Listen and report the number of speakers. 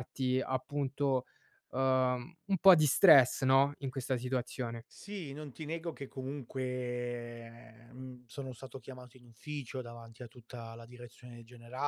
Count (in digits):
2